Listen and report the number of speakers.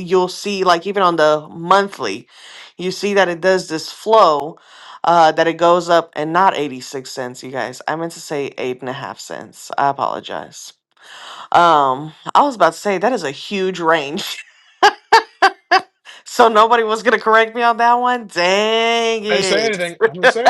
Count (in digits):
2